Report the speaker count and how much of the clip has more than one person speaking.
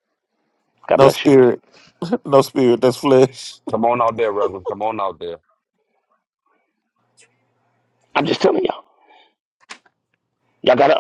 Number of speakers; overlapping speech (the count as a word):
three, about 3%